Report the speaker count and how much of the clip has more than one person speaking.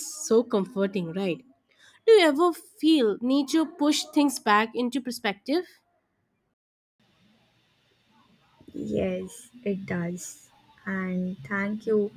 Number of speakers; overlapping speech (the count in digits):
2, no overlap